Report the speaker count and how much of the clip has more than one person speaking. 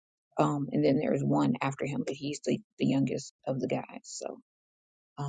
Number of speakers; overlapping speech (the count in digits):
1, no overlap